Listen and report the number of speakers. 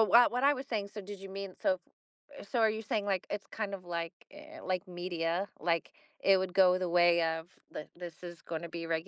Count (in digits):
1